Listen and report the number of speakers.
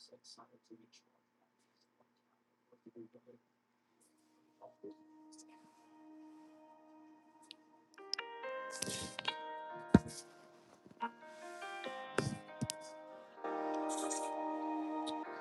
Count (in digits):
0